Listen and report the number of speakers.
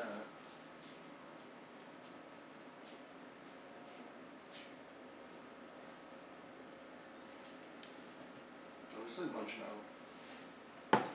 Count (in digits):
1